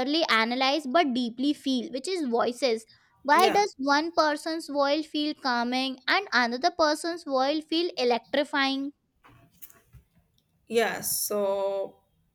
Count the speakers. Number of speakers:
2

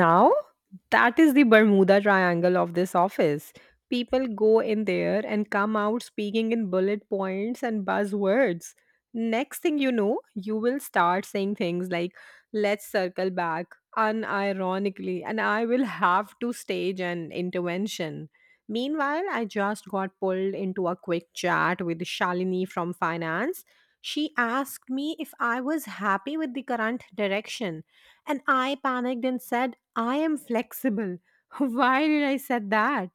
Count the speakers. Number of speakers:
1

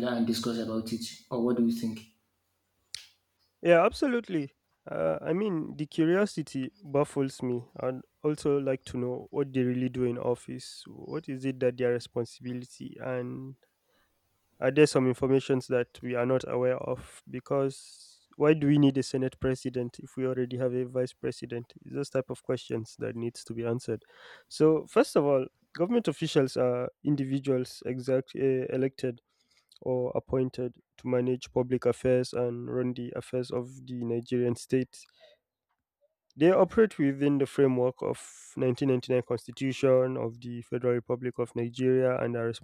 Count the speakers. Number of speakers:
2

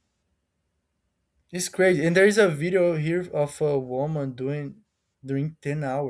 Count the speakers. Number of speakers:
1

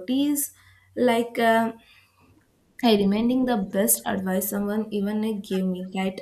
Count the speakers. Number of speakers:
1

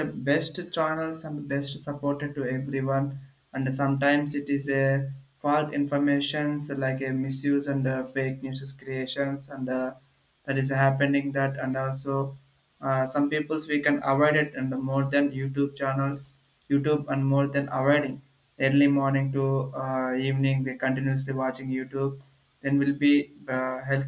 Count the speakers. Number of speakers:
1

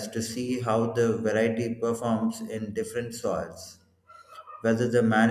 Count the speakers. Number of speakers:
1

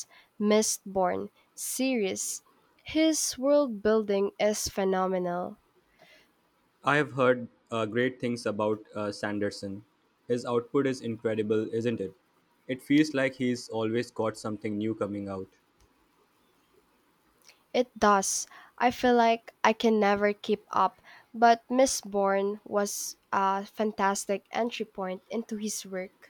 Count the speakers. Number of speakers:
2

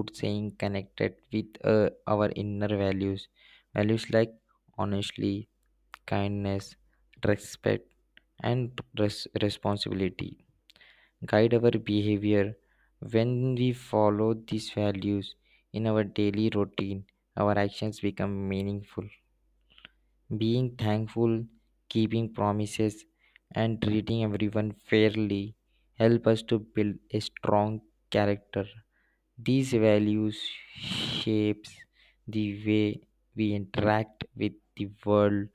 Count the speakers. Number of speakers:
1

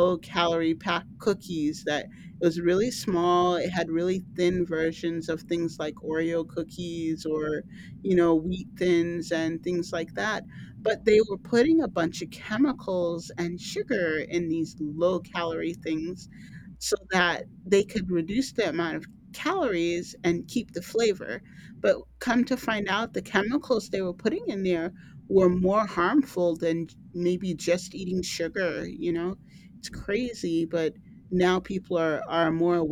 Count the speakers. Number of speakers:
1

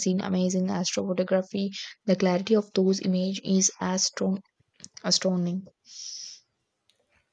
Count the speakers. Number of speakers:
1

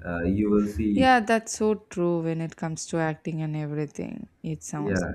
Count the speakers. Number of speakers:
2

